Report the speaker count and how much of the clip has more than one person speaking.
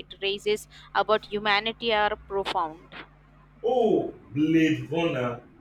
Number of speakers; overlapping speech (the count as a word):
two, no overlap